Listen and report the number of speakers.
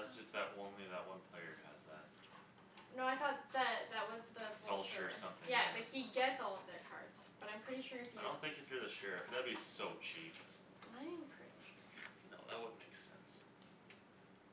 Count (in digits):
2